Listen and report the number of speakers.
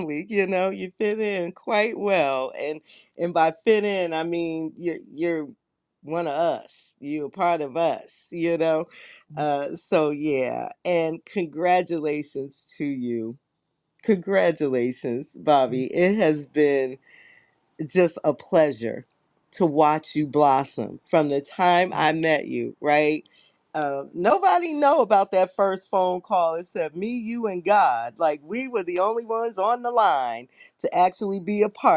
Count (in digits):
1